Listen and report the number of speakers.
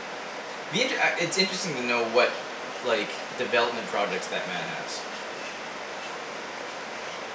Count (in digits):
1